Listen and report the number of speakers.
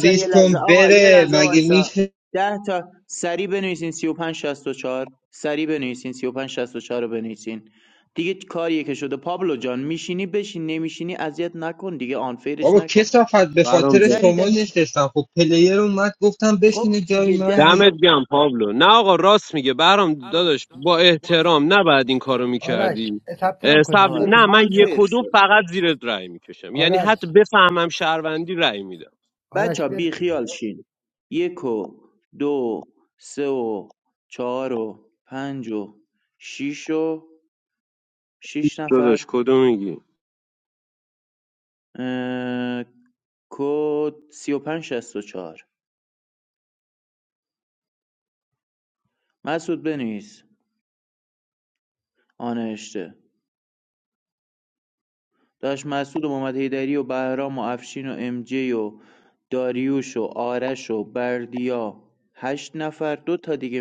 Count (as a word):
four